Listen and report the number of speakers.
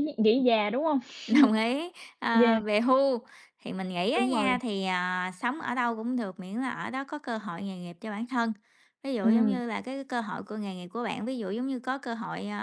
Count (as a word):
two